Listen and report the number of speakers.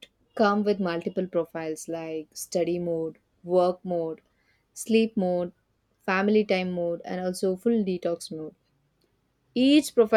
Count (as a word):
one